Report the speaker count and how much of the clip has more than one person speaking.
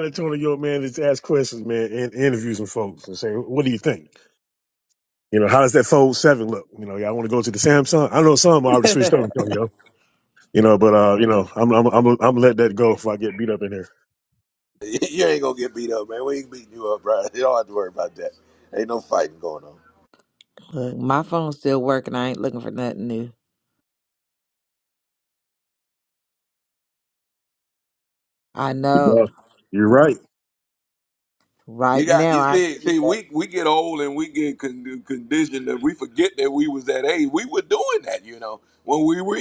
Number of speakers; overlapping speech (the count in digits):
3, about 4%